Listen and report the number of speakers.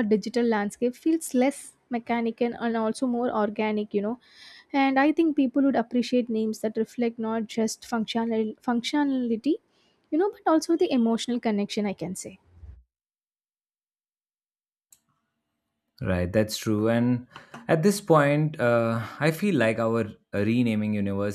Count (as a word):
two